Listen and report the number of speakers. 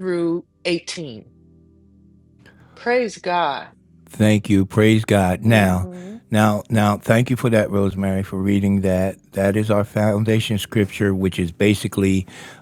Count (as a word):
two